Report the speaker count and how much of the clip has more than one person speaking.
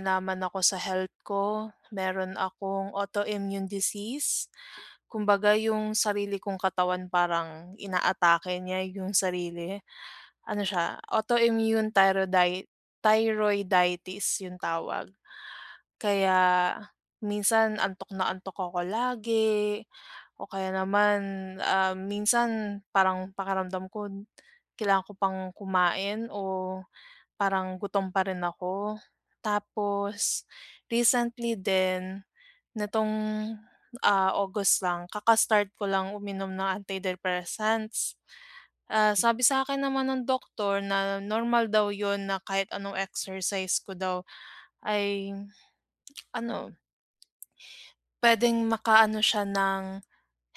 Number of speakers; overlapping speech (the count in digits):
1, no overlap